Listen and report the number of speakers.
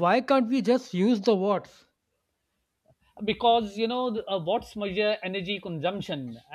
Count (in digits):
2